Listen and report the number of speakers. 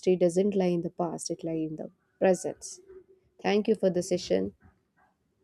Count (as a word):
one